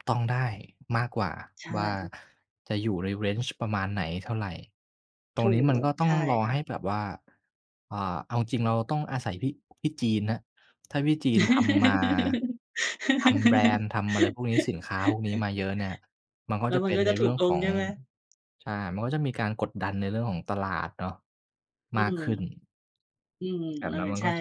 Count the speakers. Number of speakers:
two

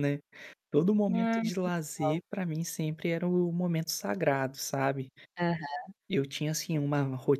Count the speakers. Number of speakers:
two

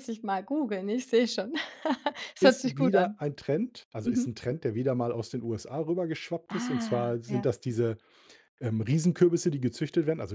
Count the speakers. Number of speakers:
two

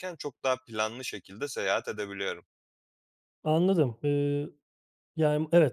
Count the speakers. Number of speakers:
two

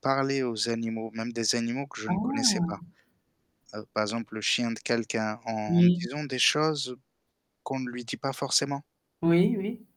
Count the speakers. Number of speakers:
two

